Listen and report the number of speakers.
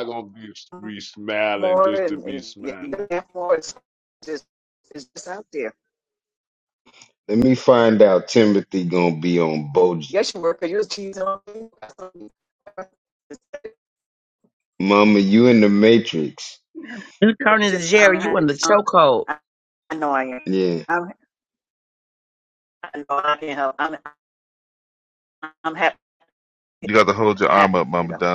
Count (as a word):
five